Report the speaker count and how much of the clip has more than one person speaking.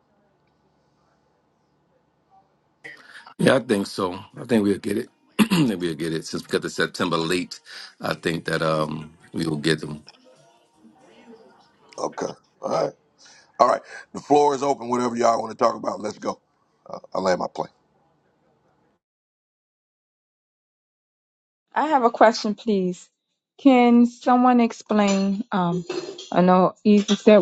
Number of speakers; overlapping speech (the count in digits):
3, no overlap